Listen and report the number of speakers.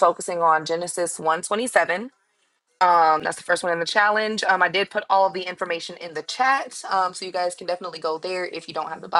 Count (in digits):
1